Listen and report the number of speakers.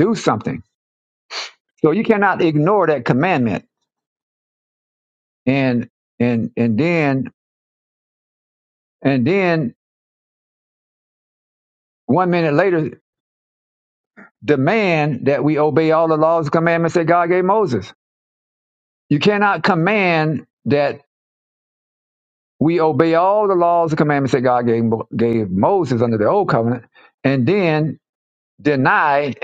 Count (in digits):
1